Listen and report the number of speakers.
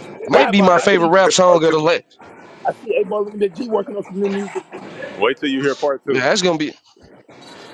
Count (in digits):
3